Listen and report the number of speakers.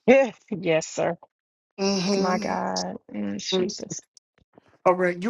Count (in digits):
2